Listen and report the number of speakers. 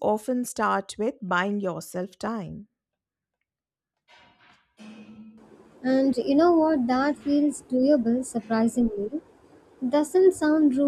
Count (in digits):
2